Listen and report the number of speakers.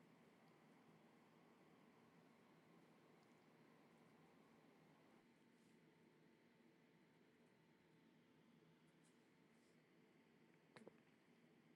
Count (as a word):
zero